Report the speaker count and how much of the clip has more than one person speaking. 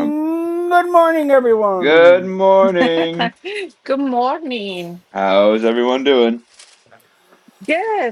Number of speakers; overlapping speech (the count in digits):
3, about 7%